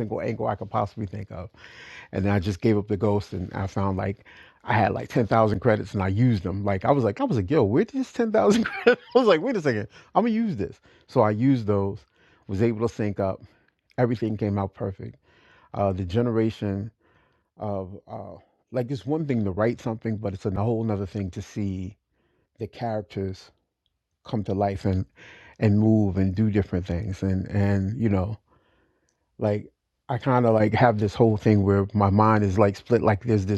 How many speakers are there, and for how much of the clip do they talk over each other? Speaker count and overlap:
1, no overlap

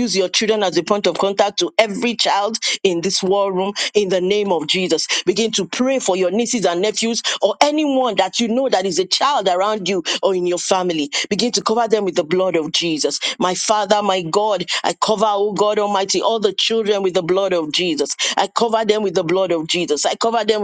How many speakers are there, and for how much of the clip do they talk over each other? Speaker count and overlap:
1, no overlap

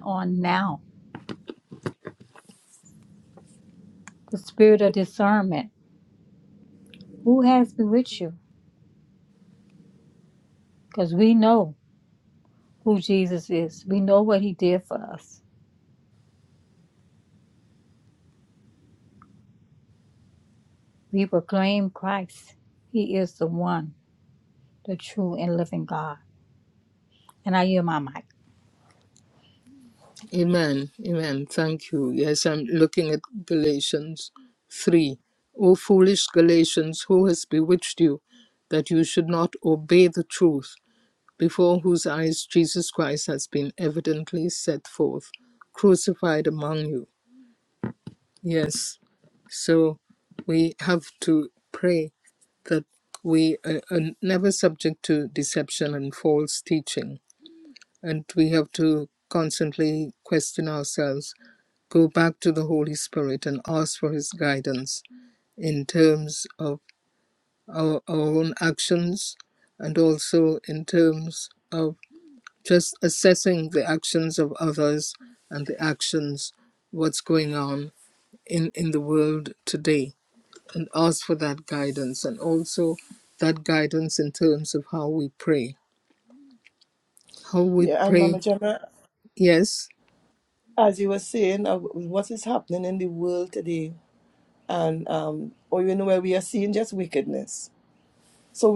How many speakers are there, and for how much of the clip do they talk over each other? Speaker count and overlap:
3, about 1%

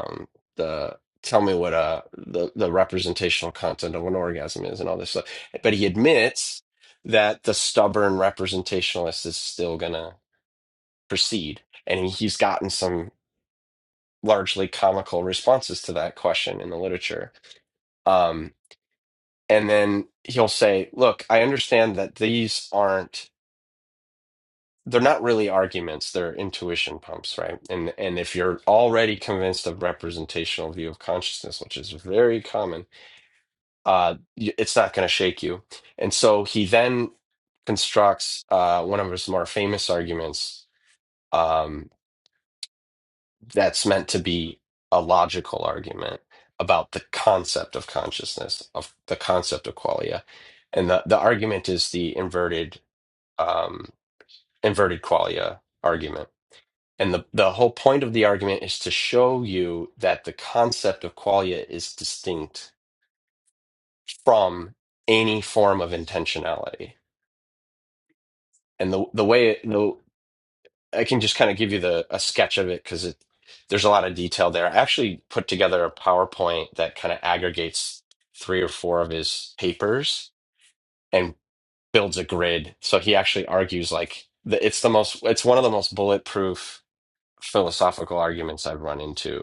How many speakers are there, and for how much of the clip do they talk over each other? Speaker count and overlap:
1, no overlap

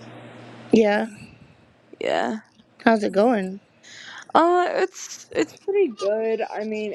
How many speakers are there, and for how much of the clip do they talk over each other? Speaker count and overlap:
2, no overlap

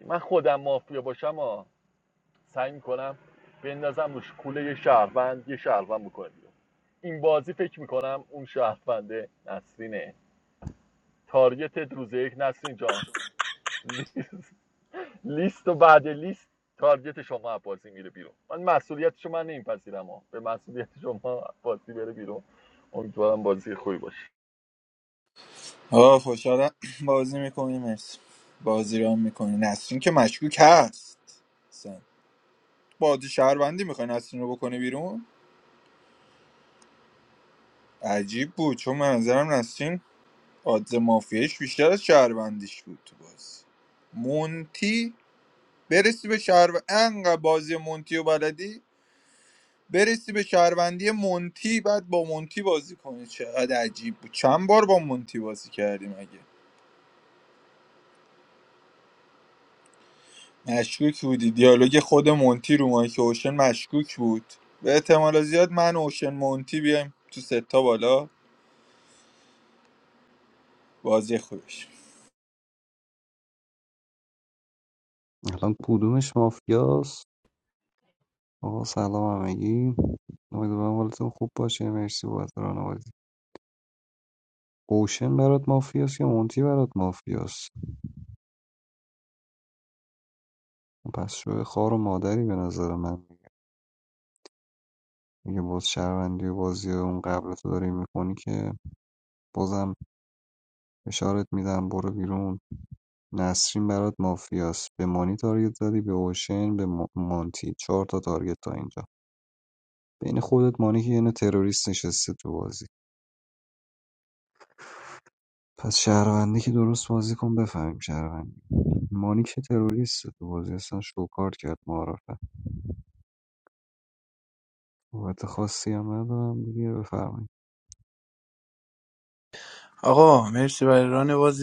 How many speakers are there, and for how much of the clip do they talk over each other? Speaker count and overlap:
4, no overlap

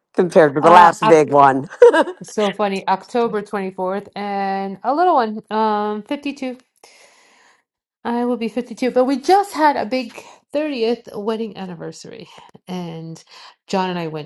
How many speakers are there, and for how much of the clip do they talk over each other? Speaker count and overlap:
2, about 4%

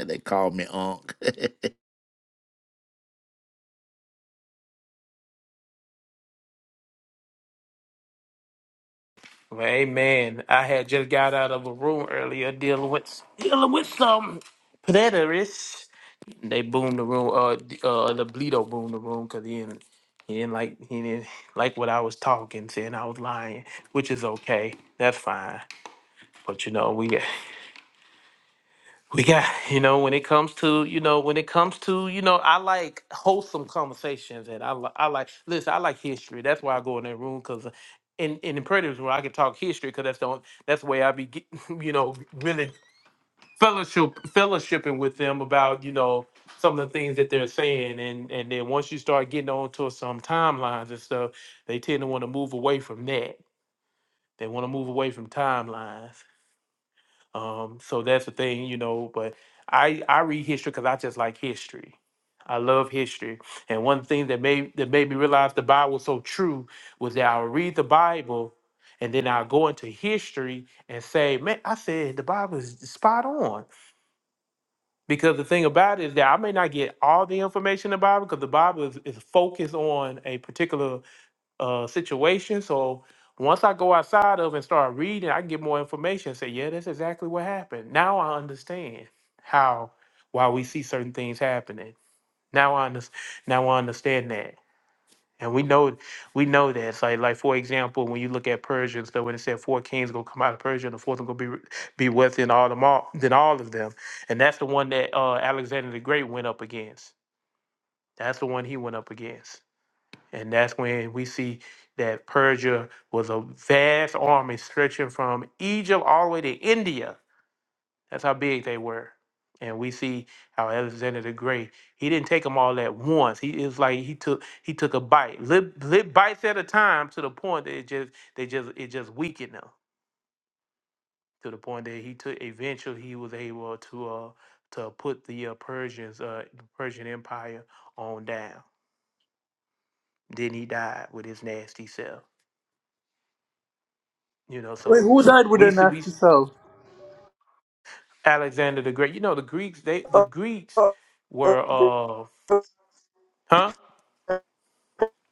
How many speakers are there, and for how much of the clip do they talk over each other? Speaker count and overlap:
3, about 1%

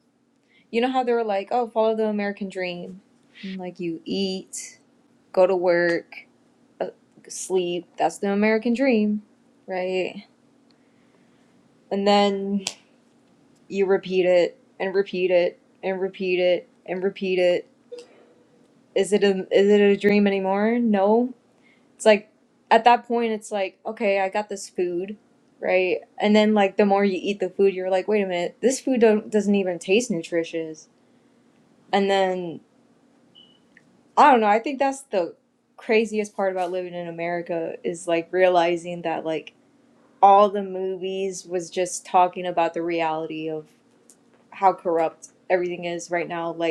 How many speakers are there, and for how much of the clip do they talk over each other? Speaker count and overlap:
1, no overlap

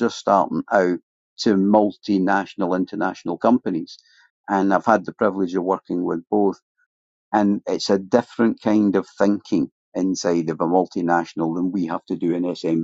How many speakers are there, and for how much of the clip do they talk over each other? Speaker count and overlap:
1, no overlap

